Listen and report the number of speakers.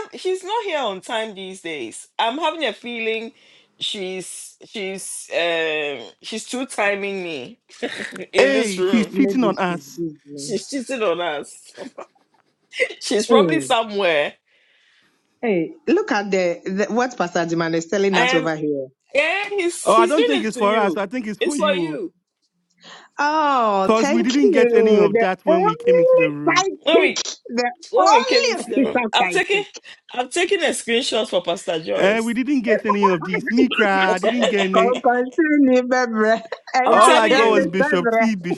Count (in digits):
3